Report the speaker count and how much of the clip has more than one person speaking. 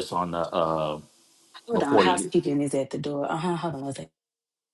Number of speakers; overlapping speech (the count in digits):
2, about 12%